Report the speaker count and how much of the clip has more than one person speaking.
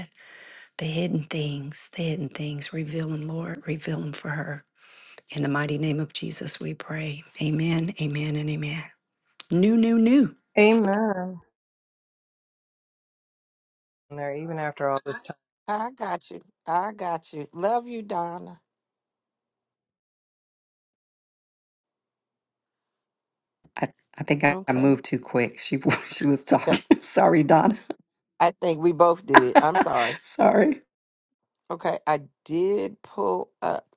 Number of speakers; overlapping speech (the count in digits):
3, about 1%